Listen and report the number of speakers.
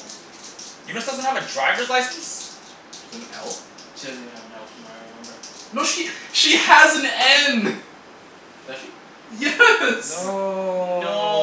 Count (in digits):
4